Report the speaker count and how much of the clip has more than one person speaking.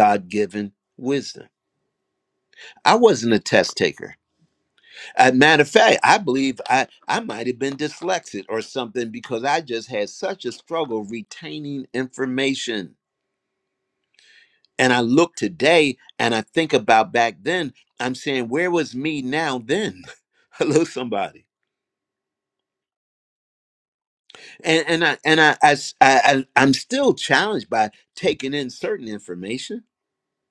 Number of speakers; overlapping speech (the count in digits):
1, no overlap